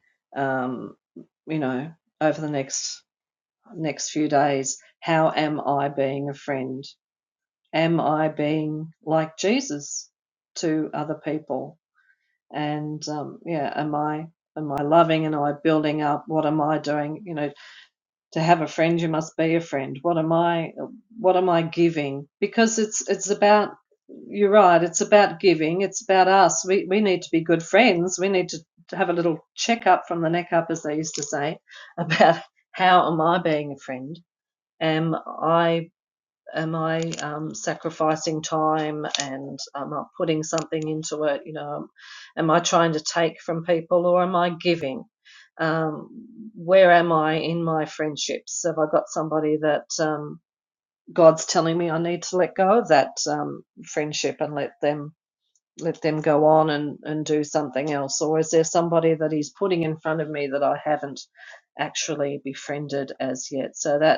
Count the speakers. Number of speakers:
1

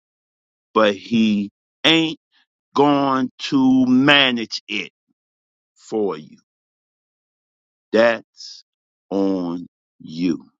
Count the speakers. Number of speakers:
1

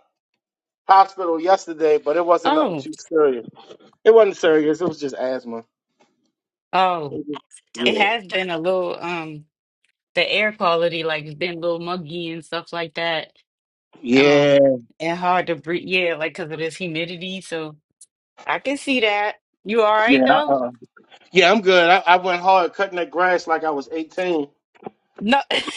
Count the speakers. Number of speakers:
2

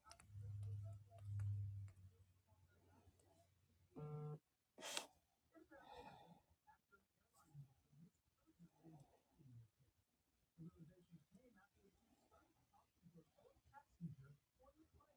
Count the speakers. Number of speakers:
0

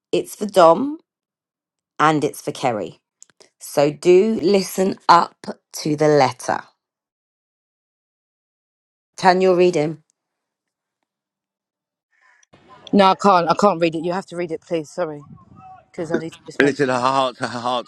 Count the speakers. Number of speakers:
3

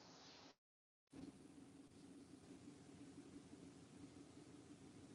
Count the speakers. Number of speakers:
0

